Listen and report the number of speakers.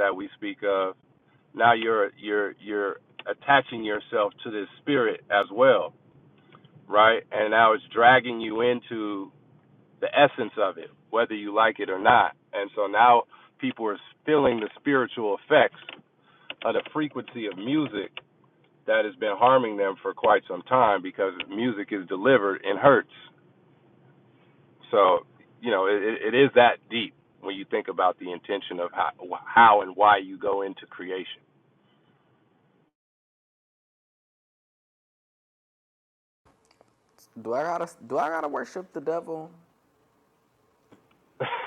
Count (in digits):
2